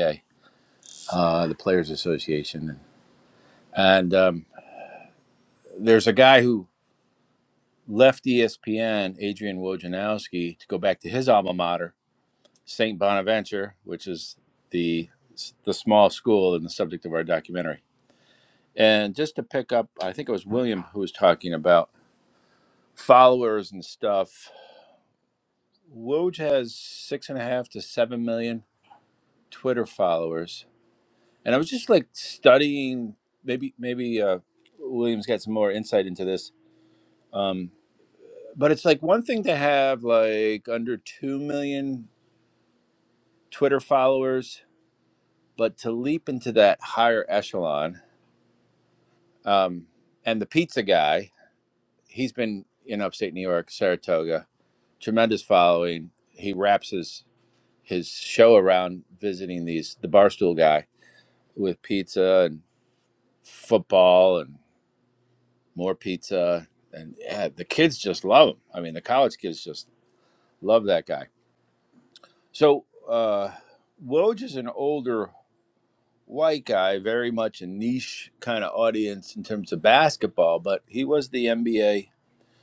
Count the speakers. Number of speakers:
1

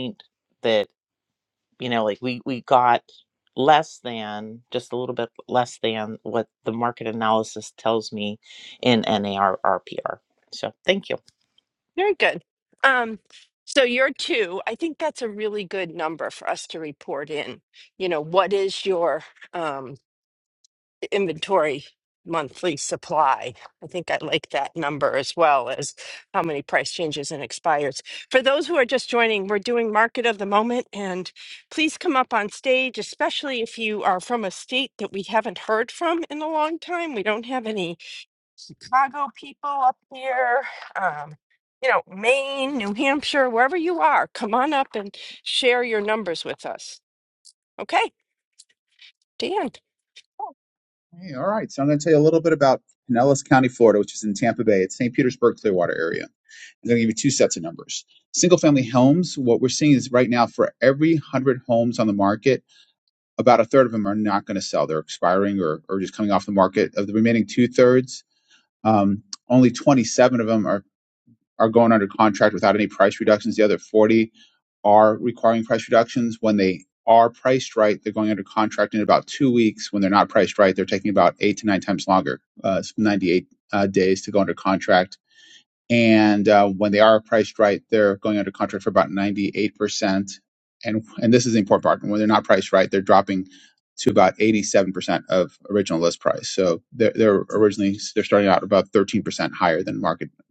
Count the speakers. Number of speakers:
3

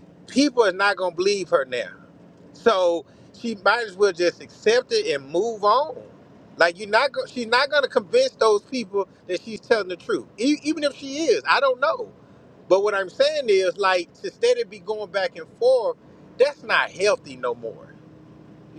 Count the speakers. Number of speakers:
1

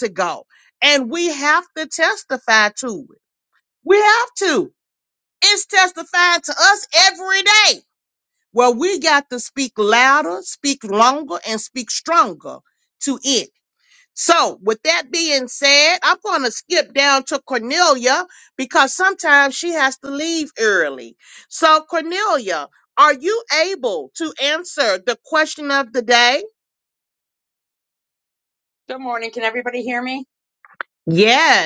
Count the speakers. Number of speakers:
2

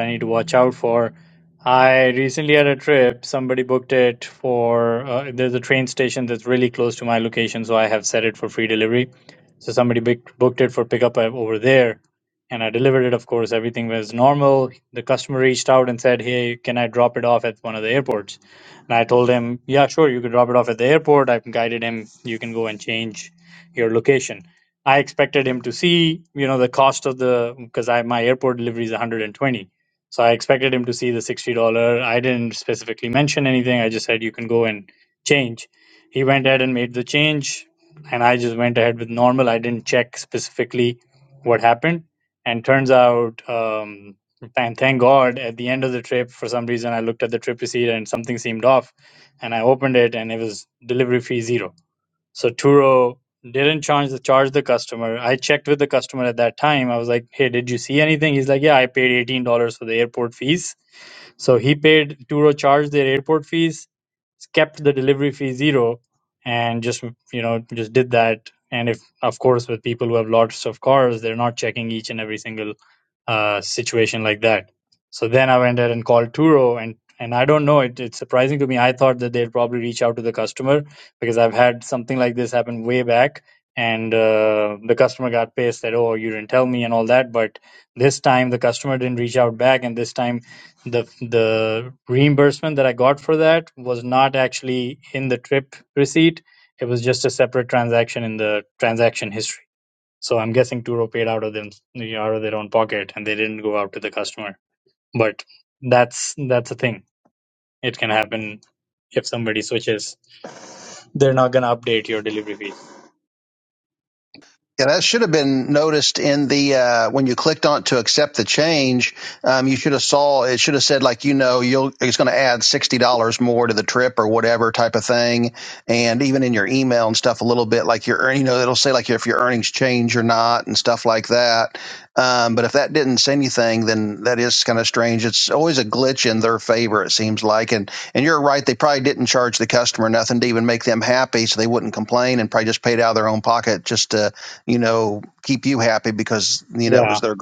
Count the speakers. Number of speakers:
2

